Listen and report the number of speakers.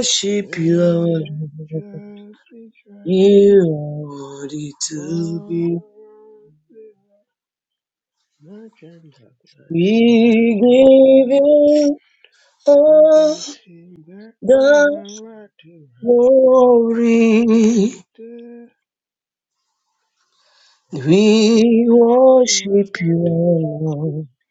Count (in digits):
2